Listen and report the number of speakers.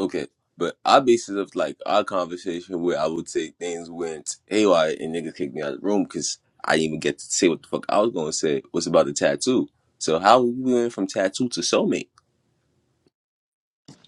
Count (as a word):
one